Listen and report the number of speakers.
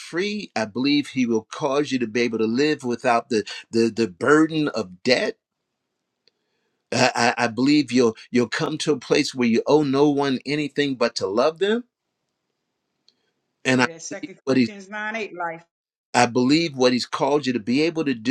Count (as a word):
two